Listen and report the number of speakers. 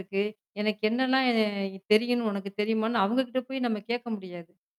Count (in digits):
1